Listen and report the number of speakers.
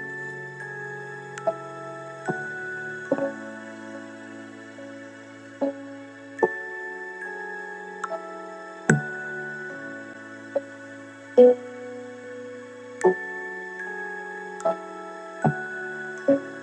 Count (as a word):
zero